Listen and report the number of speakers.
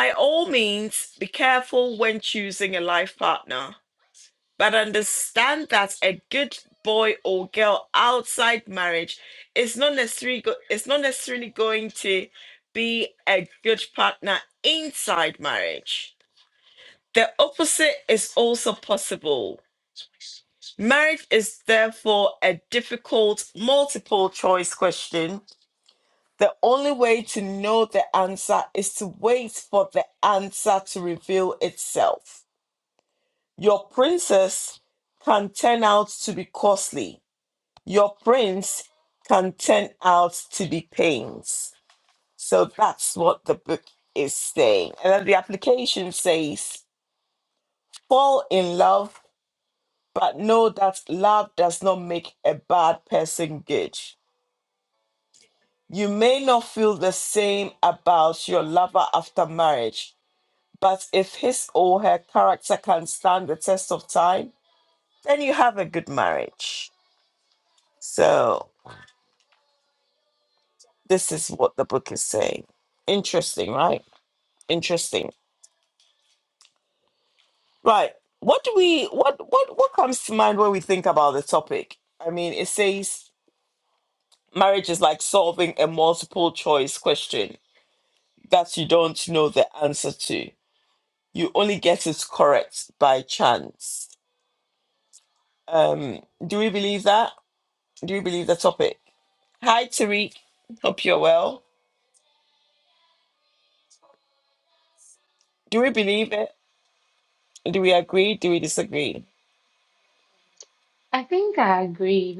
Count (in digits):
2